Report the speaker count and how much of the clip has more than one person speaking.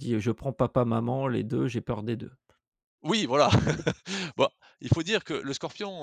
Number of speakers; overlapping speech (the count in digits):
2, no overlap